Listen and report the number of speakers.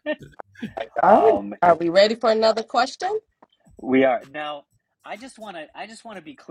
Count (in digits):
2